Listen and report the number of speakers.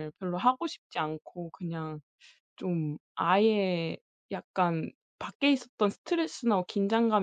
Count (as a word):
one